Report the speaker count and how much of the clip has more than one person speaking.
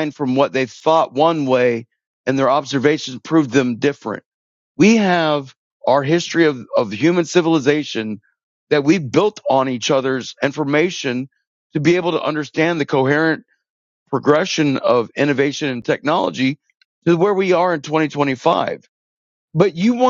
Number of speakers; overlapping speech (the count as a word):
one, no overlap